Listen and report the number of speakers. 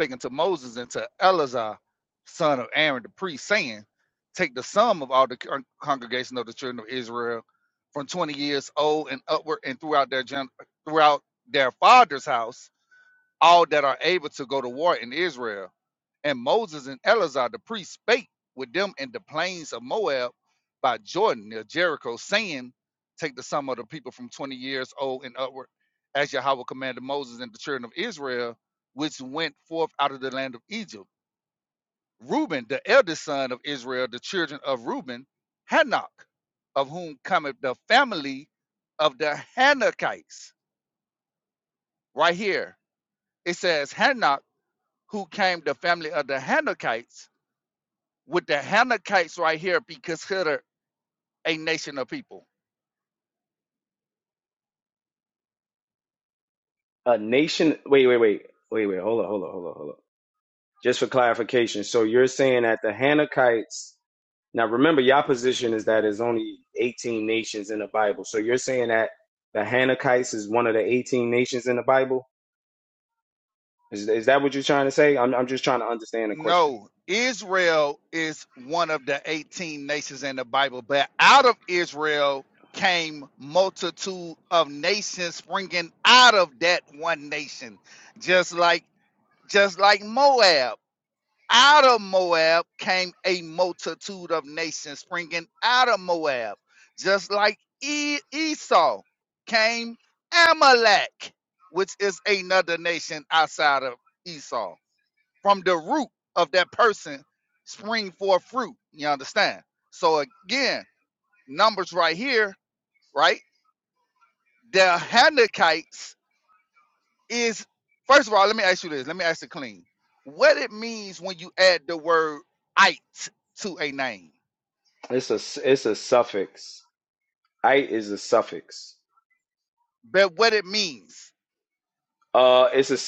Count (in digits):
2